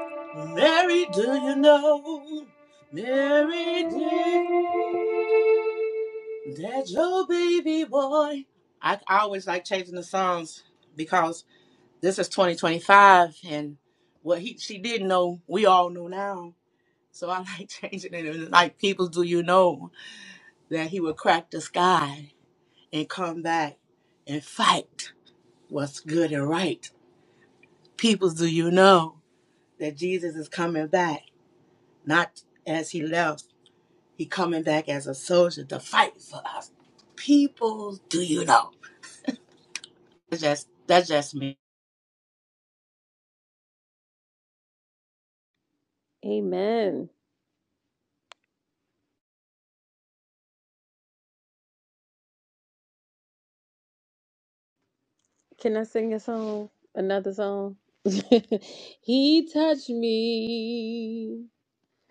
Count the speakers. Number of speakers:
2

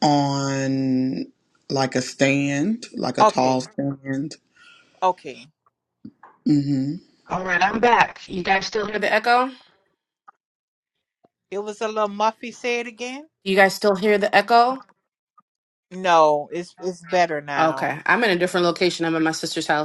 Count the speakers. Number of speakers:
3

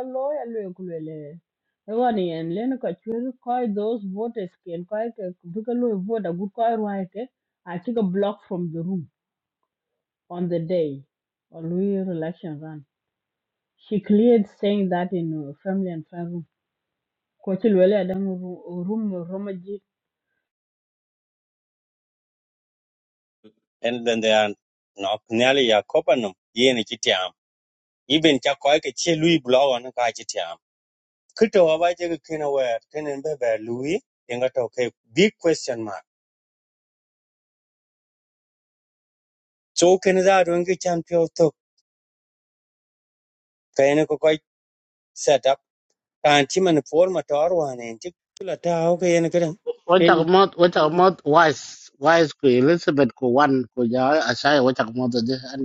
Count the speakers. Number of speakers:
3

